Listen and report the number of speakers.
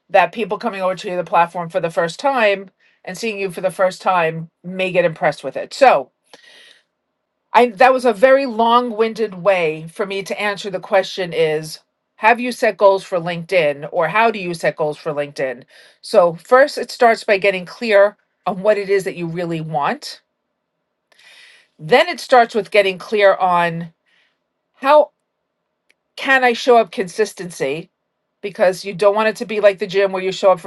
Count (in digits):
1